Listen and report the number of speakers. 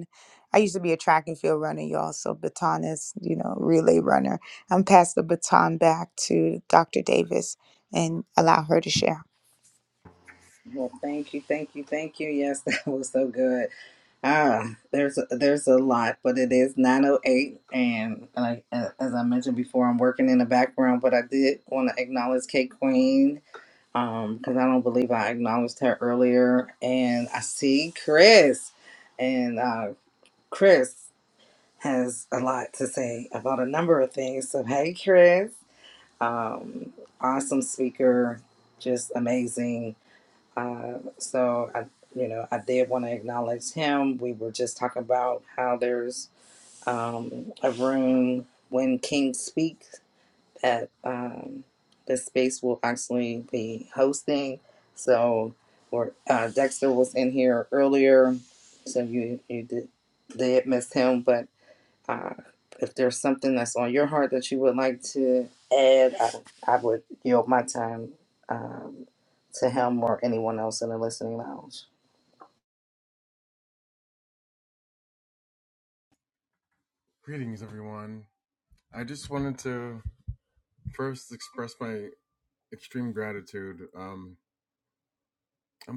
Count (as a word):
three